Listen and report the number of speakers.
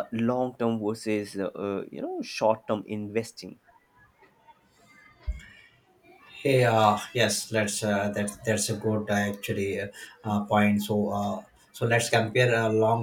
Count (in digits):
2